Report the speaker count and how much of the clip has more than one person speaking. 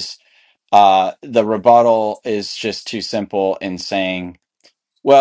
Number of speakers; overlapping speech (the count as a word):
one, no overlap